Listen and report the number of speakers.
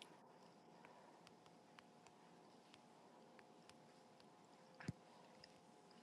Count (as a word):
zero